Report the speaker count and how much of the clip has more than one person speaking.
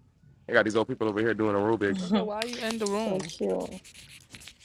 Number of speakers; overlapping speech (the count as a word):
three, about 18%